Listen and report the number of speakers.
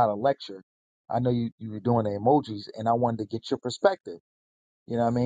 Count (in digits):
1